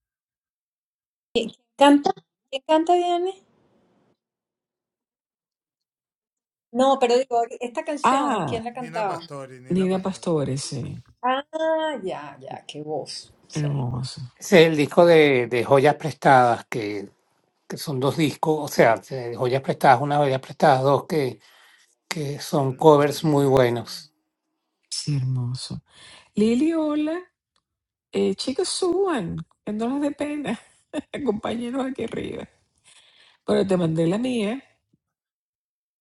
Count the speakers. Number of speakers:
three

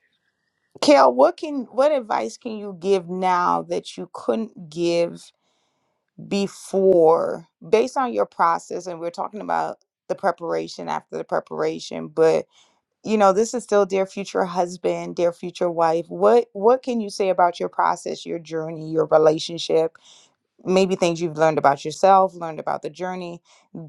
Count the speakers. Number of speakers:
one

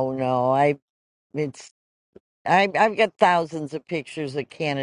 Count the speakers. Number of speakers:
one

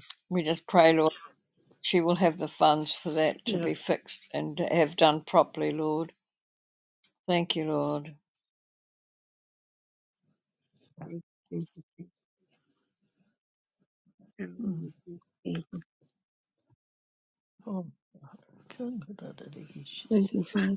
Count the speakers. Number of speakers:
three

